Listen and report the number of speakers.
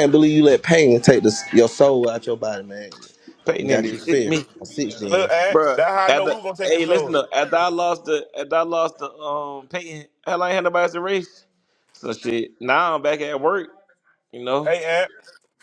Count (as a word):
three